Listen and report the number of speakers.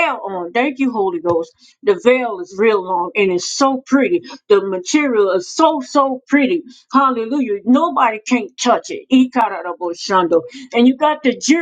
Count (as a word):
one